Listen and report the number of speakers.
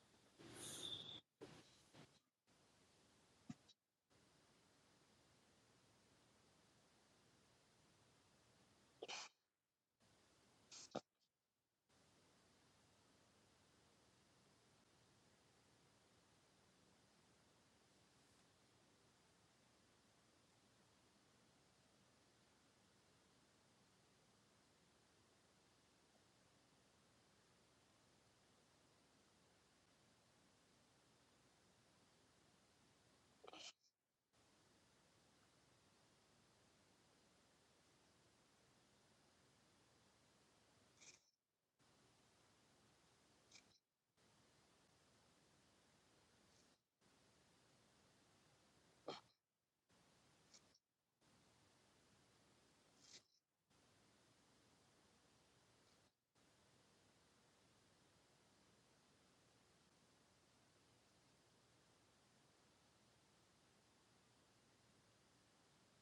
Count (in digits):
0